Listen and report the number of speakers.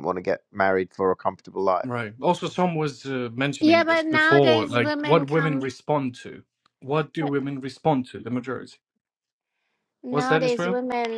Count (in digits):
3